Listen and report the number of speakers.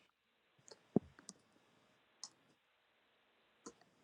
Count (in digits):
0